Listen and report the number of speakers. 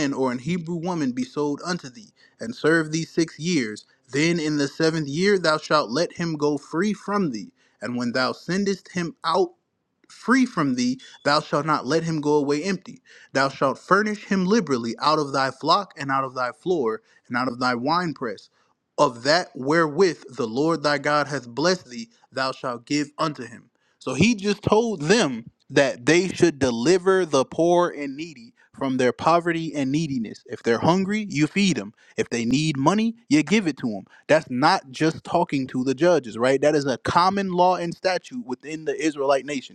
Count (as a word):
one